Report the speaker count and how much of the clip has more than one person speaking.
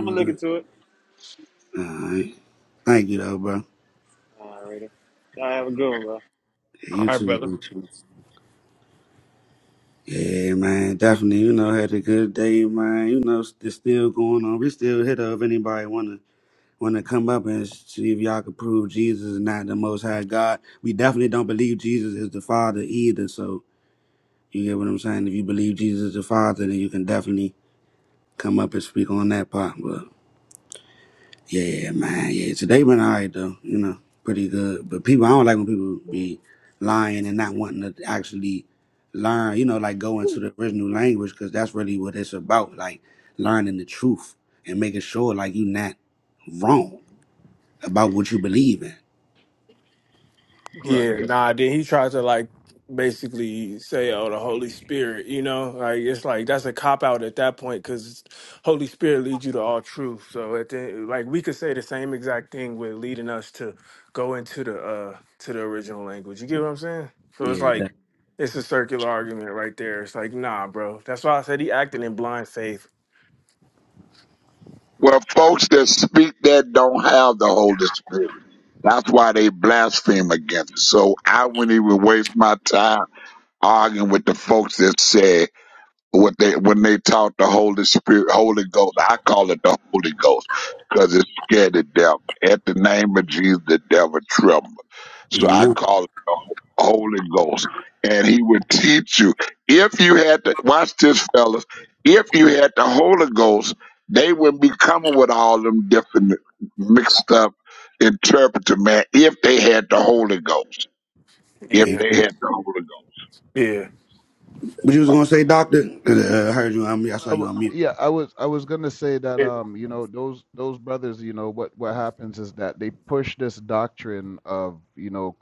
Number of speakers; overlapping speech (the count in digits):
5, about 3%